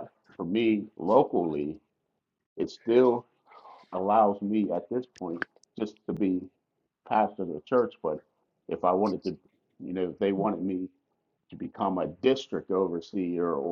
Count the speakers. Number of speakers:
1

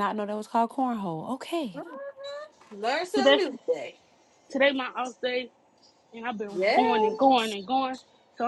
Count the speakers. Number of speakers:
3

